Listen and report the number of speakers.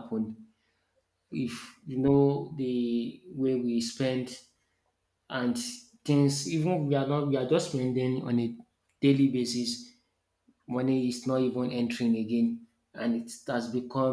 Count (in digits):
1